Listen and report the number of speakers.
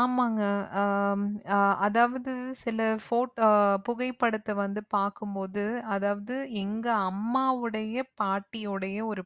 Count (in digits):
1